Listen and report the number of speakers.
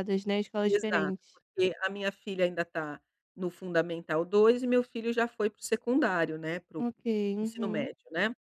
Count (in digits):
2